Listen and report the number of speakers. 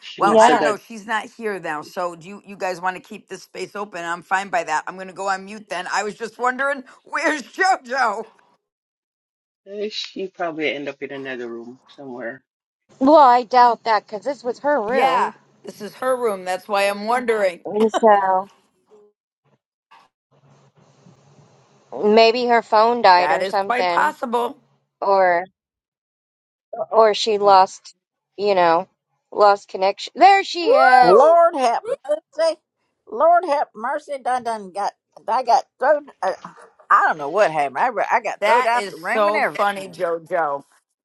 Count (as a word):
four